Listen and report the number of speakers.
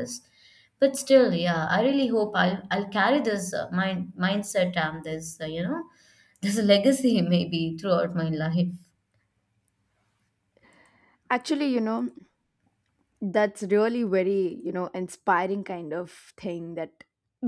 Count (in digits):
2